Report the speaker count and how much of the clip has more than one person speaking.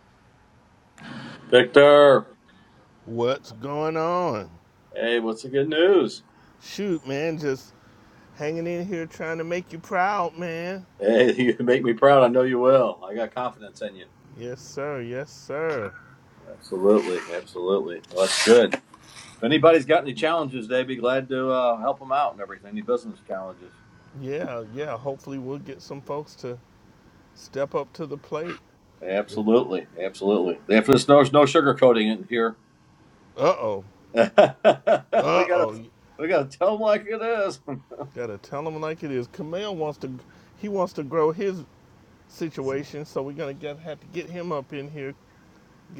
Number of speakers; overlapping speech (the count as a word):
two, about 1%